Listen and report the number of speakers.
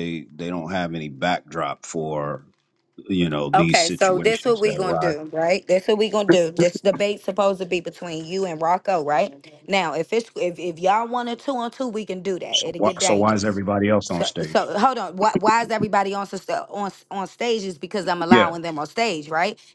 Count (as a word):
two